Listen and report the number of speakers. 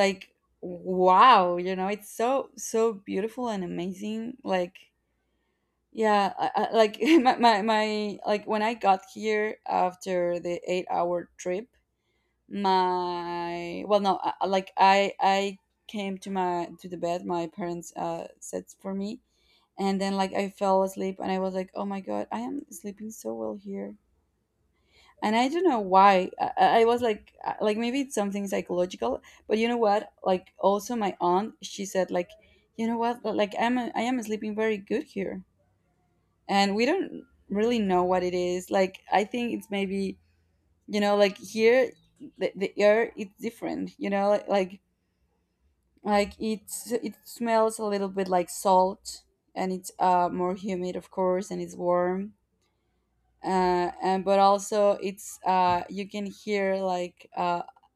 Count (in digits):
1